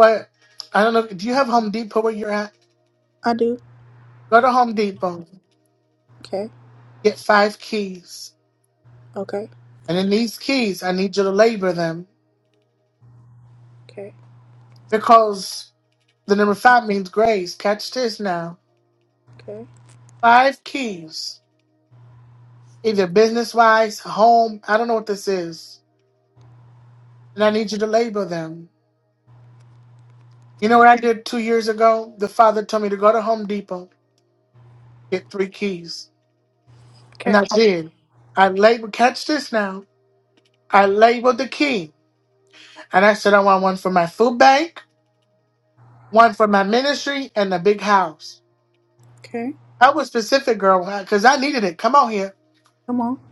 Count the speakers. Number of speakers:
2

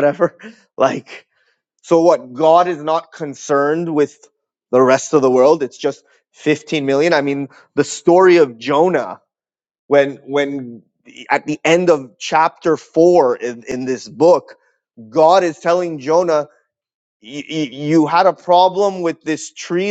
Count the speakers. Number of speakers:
1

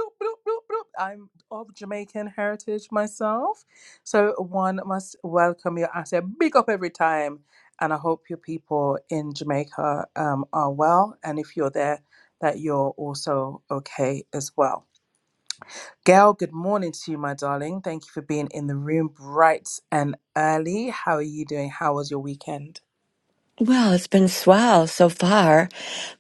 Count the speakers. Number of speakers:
2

